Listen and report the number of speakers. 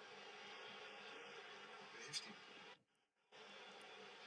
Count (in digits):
0